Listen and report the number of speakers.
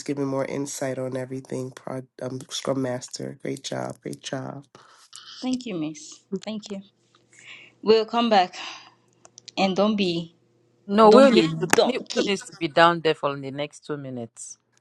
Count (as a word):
three